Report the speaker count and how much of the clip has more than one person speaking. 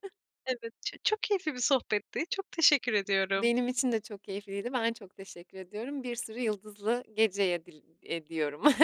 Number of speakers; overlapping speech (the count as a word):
two, about 1%